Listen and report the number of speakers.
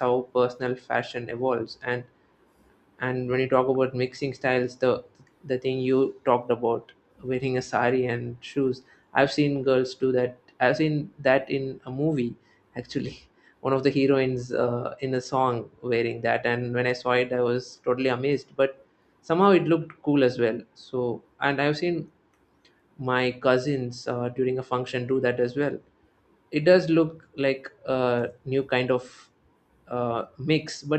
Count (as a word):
one